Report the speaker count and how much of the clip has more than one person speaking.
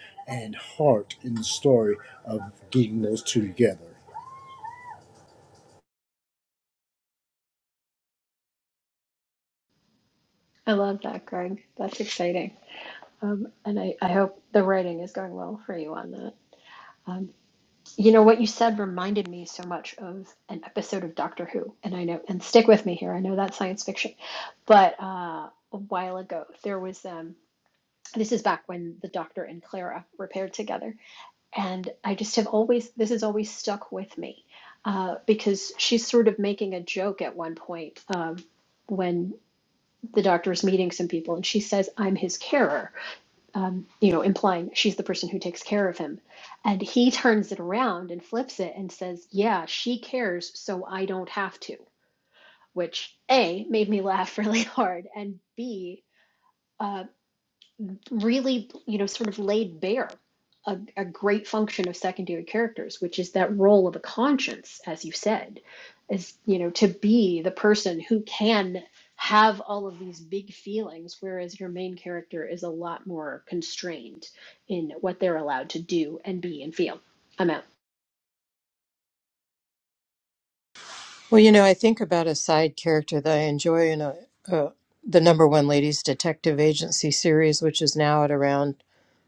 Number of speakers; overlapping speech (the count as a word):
three, no overlap